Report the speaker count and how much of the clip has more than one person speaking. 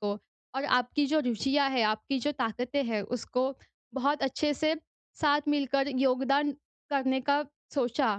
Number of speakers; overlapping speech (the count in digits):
1, no overlap